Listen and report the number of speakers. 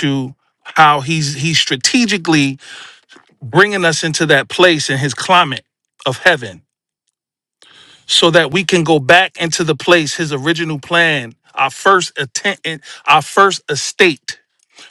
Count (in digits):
1